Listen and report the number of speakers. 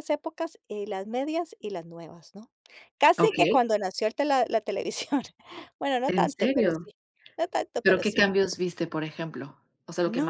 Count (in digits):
2